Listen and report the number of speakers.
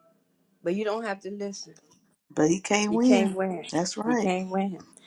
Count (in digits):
2